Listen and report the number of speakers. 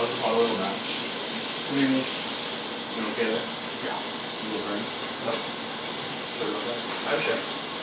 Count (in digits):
2